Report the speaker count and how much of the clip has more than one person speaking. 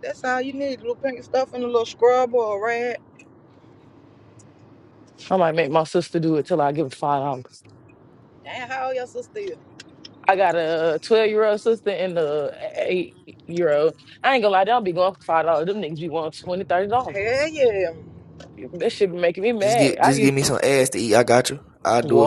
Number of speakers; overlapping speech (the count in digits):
3, about 4%